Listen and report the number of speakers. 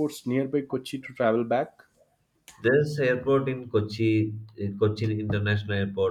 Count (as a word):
two